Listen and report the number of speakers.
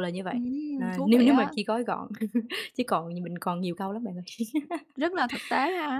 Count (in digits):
2